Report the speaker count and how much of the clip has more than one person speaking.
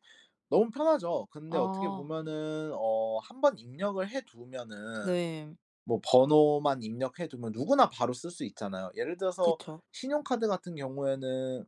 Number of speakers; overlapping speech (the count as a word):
two, about 7%